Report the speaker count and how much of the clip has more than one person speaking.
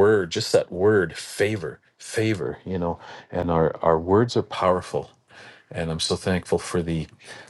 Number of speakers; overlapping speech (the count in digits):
1, no overlap